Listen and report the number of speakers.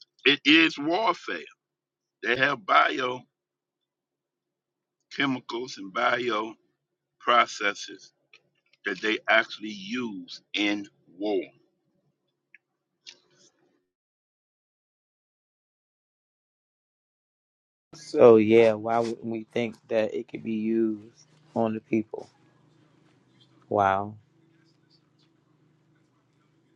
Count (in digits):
2